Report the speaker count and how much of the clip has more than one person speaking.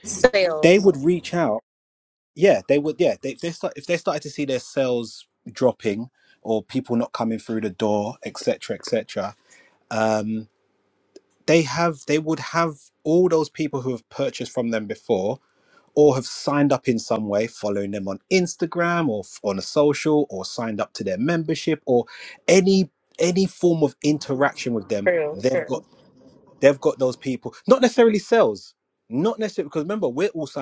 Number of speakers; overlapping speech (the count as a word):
two, about 4%